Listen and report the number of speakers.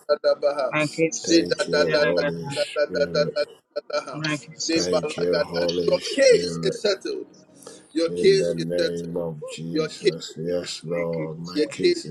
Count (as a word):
three